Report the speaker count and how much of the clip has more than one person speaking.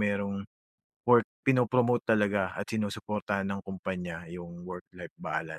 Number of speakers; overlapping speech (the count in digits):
1, no overlap